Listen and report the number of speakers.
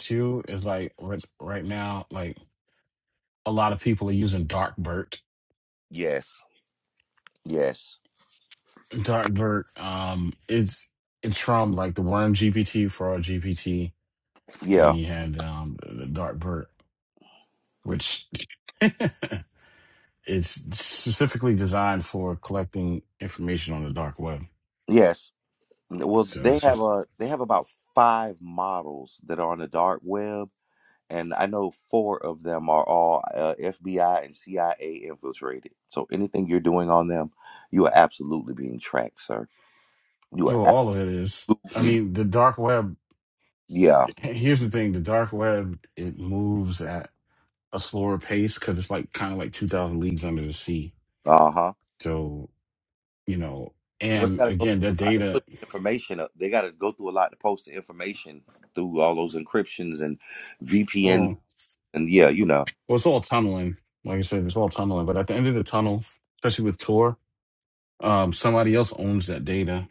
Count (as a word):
two